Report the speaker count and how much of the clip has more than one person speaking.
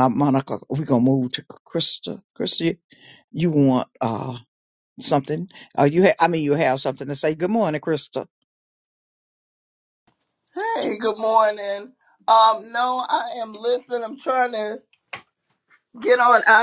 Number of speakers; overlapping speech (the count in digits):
2, no overlap